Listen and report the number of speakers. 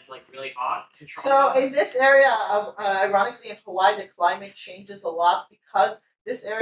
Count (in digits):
2